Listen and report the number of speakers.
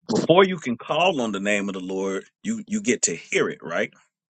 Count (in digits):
1